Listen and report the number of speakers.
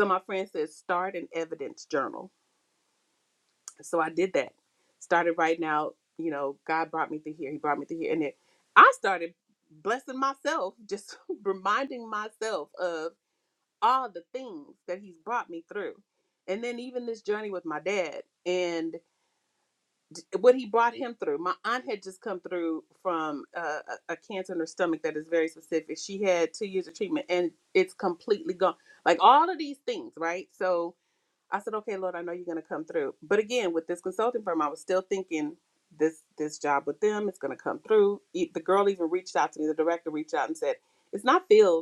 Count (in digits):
1